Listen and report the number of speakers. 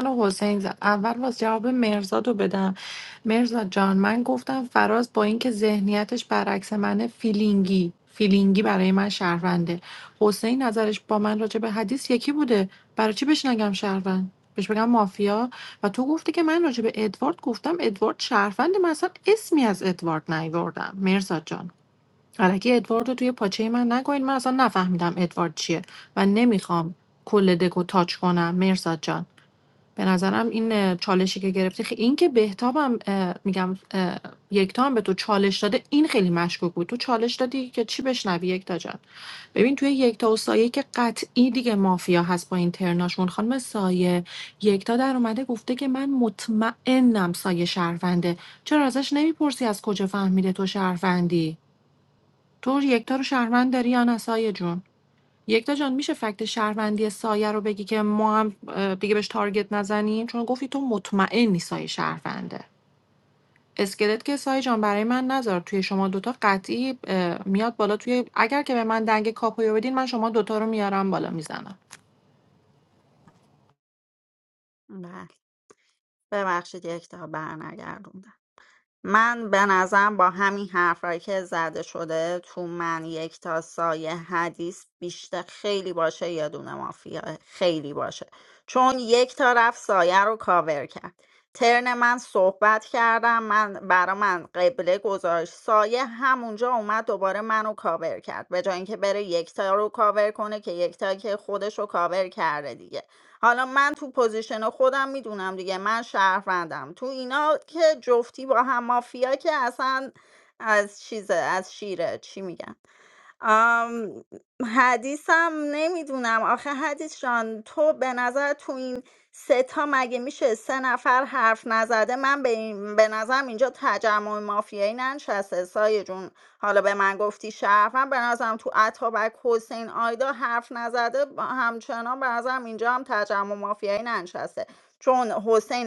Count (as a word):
two